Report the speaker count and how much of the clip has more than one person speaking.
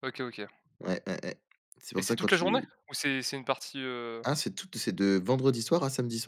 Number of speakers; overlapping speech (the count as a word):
two, about 11%